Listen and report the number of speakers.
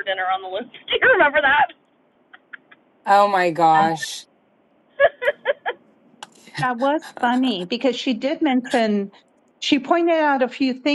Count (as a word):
three